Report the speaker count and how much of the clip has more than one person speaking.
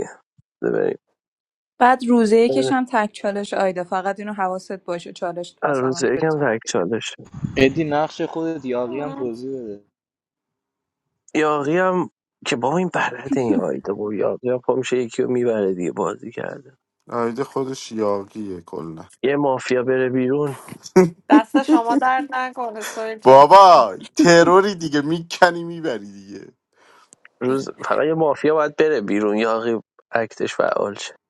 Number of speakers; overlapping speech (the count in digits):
5, about 5%